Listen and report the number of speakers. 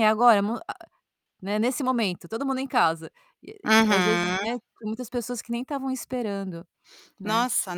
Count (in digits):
2